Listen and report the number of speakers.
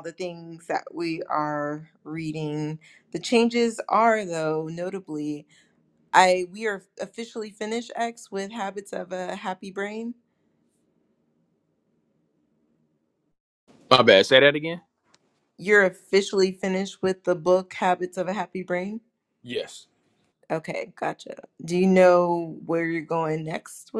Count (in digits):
2